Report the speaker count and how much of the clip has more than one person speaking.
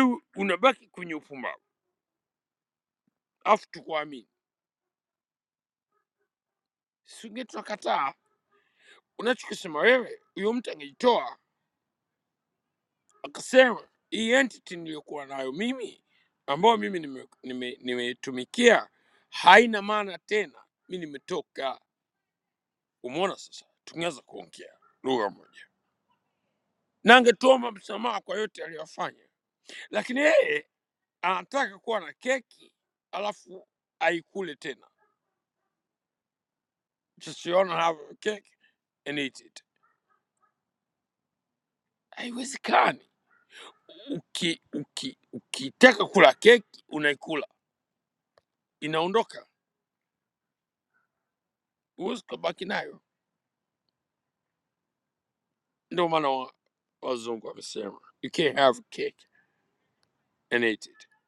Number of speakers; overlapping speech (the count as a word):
one, no overlap